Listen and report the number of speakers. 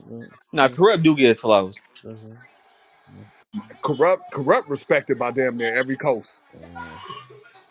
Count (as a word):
three